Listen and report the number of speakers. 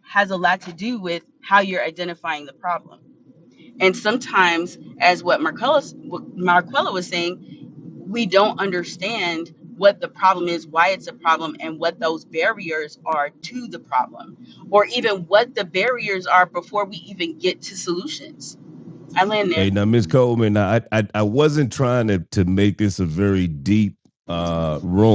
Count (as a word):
two